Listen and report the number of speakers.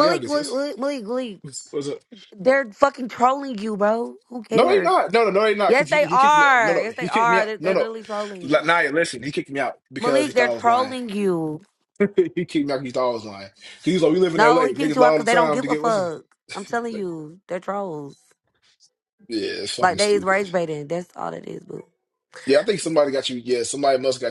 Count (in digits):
2